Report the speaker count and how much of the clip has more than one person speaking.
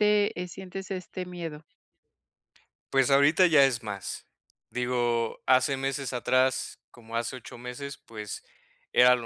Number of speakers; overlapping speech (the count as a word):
two, no overlap